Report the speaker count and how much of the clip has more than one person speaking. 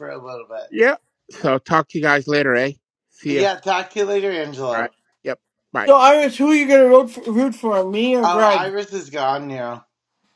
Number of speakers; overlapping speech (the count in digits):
3, about 8%